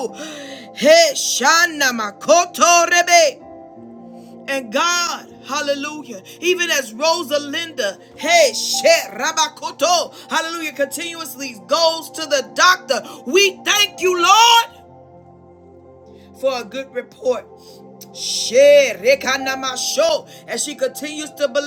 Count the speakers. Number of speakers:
one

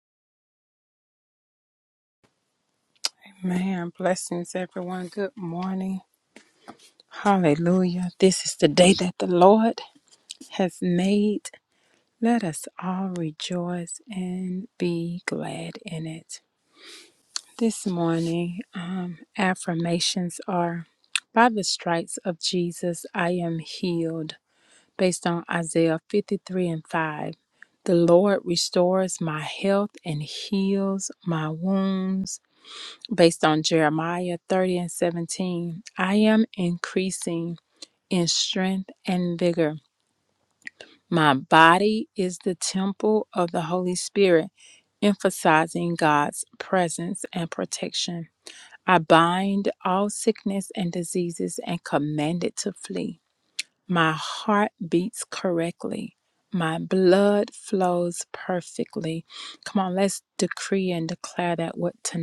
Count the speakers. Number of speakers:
one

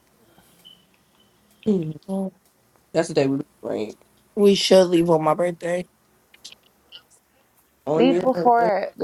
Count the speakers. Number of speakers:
three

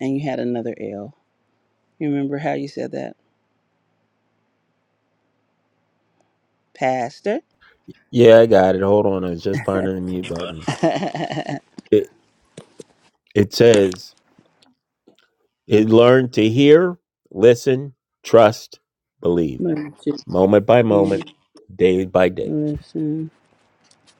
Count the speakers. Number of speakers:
two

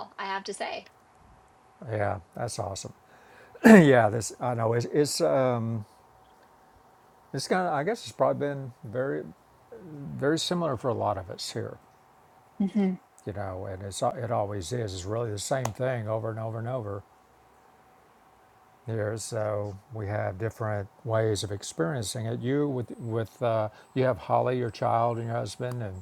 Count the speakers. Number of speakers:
two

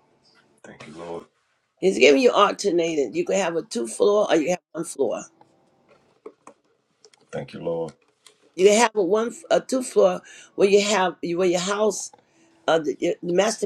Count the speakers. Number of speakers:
two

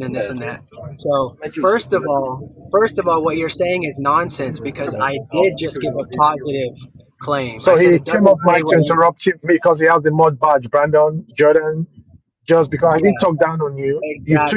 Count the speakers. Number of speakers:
two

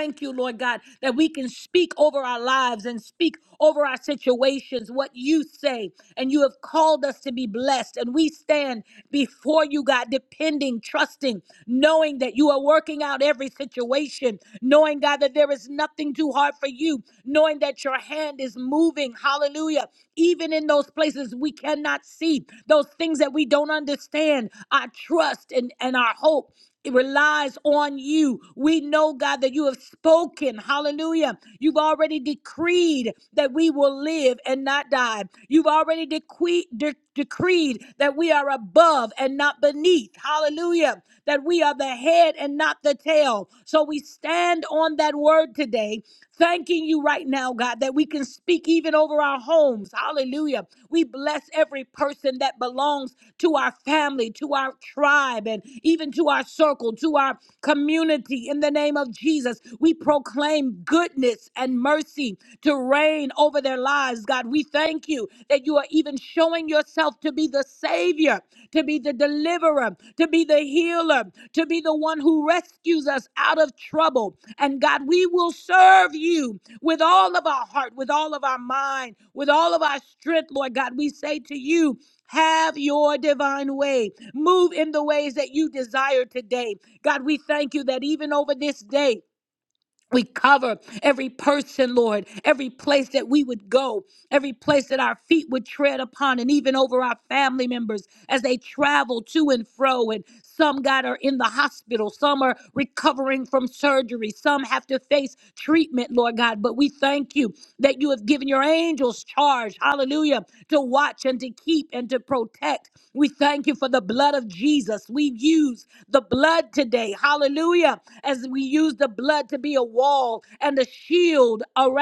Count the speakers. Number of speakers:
one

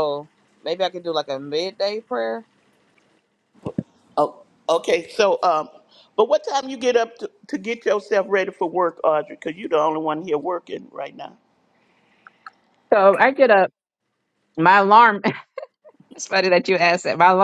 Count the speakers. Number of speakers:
three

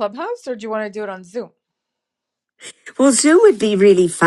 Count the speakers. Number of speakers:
two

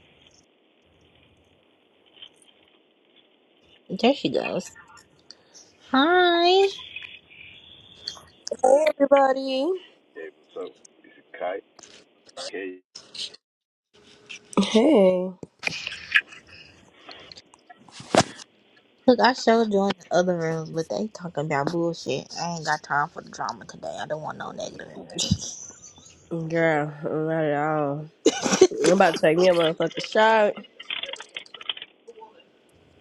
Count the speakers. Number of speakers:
three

